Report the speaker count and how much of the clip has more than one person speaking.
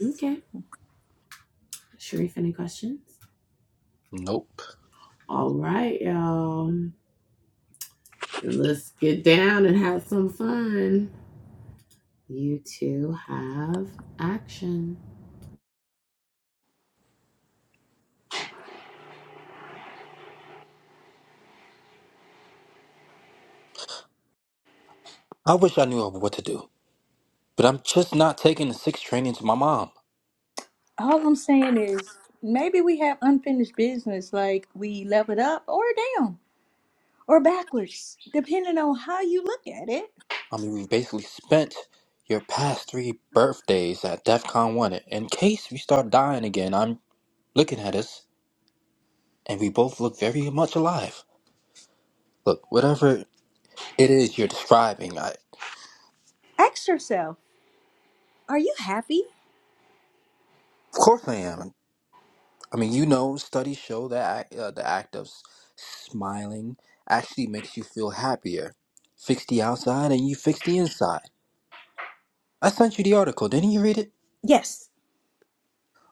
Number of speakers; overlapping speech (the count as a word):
three, no overlap